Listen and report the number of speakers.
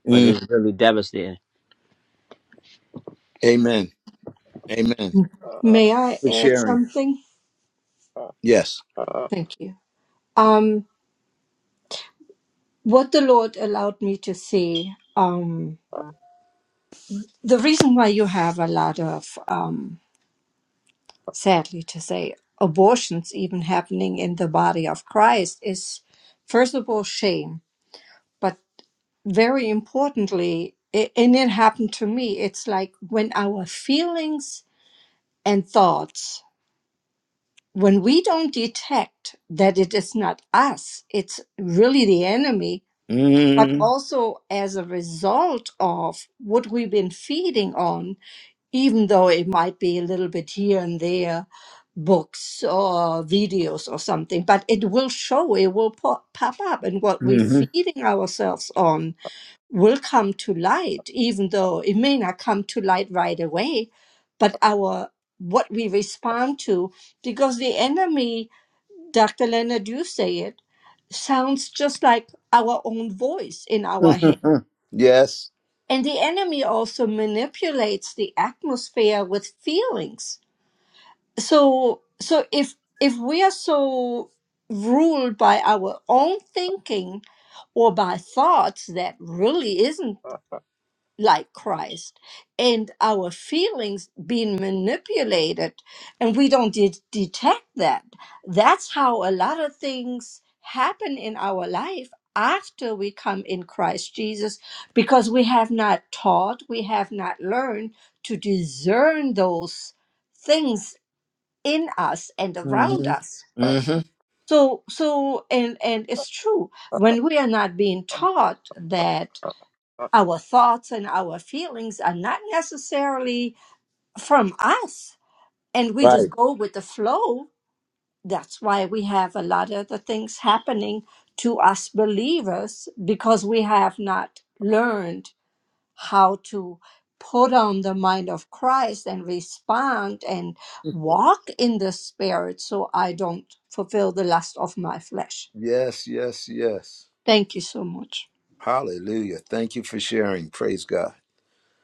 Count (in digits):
3